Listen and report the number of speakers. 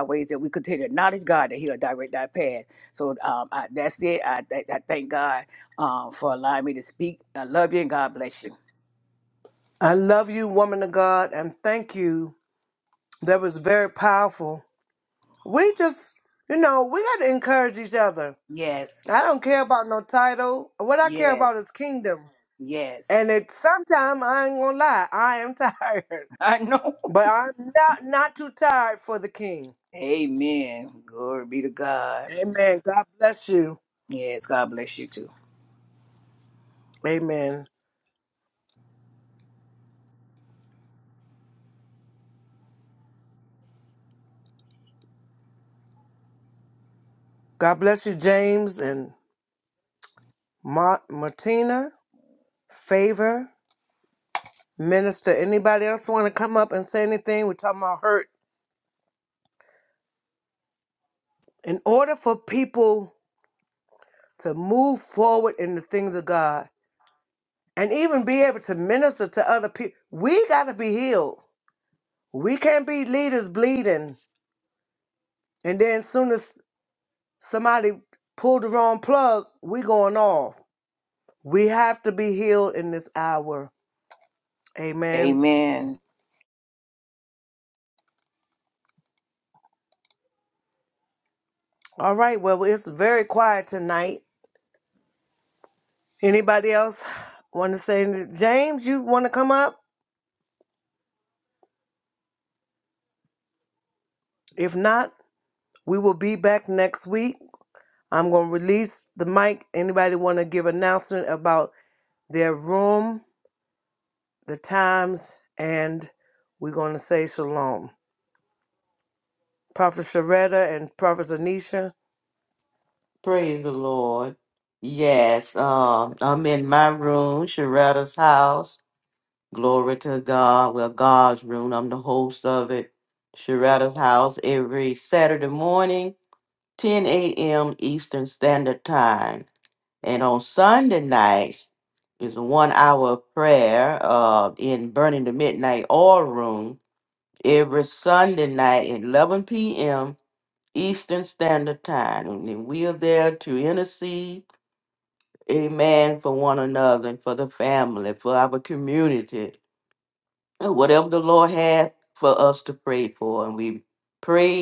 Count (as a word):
three